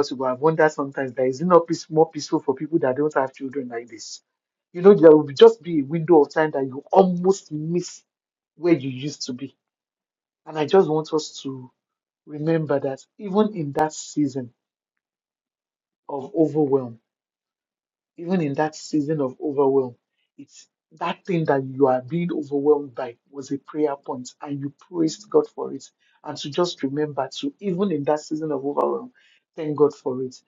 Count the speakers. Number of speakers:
one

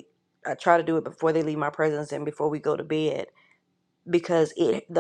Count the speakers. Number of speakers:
one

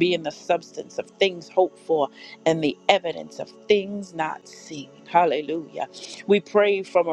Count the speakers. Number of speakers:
one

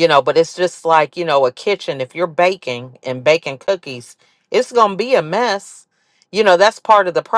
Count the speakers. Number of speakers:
one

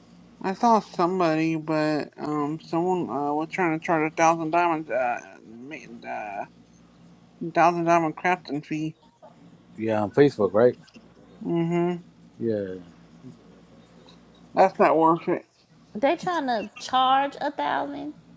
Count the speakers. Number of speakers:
three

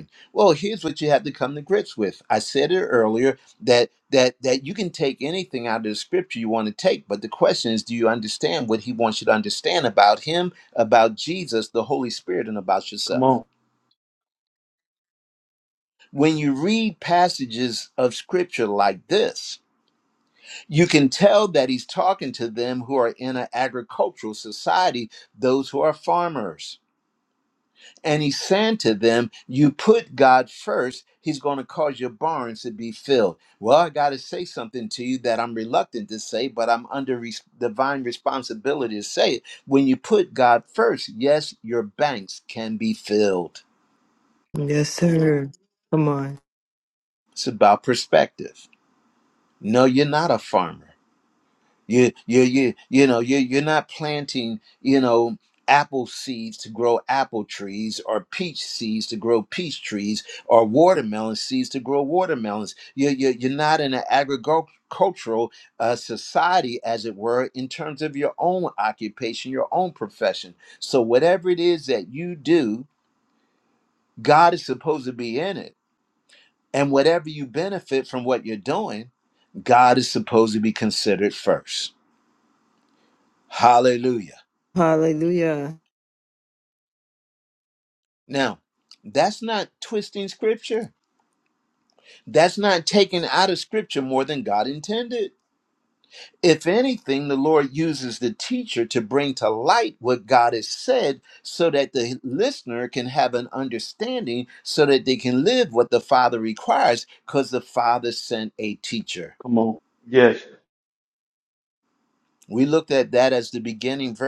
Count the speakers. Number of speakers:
three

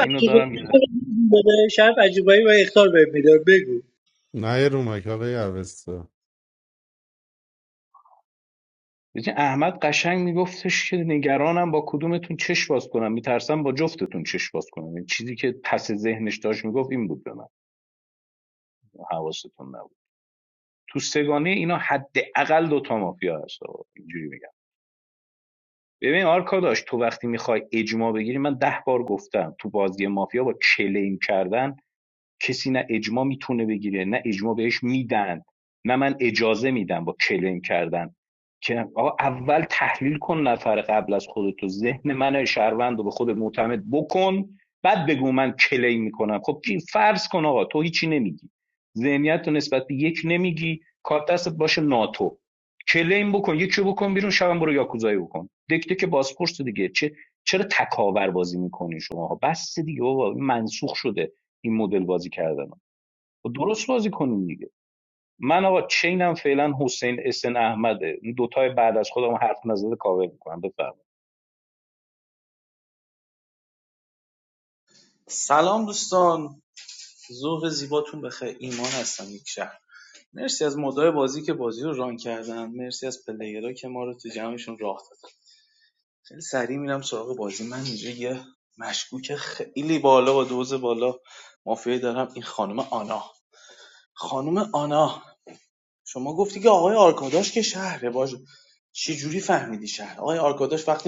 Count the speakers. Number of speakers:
four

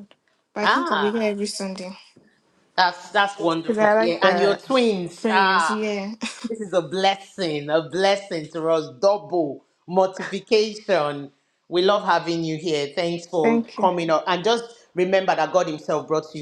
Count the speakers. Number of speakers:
two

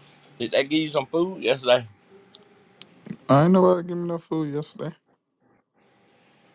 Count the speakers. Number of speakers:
two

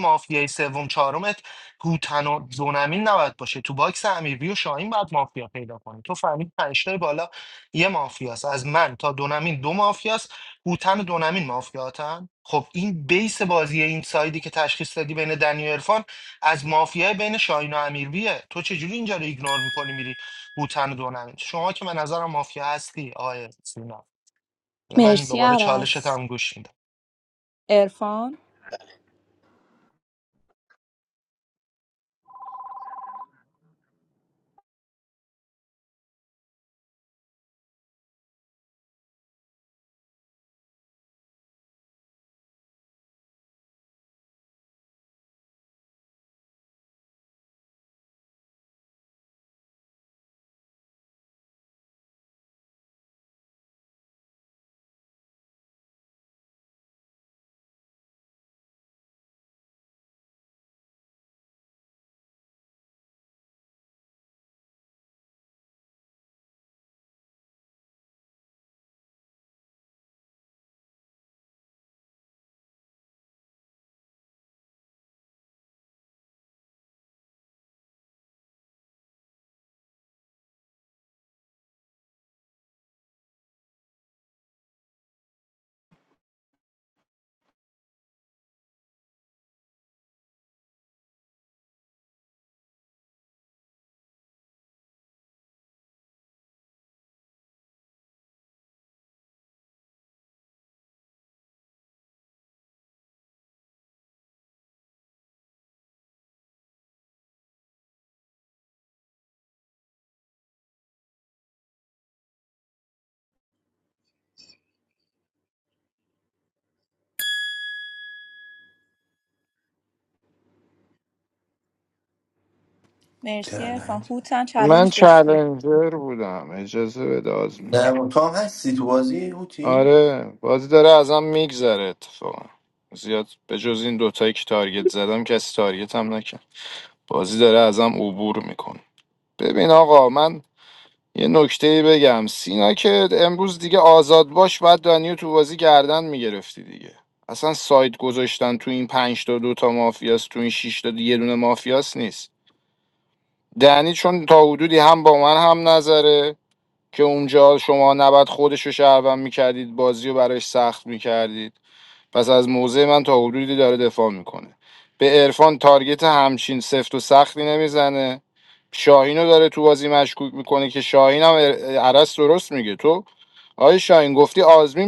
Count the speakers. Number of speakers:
four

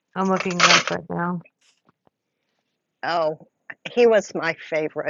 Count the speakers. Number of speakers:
two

